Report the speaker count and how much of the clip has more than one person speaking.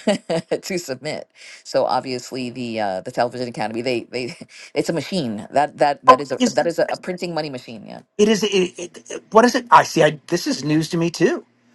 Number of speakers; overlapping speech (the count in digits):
2, about 5%